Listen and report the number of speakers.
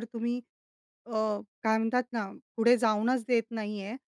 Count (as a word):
one